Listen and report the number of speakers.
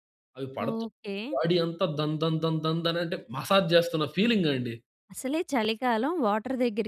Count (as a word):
two